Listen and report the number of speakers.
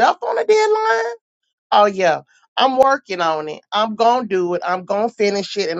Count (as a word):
one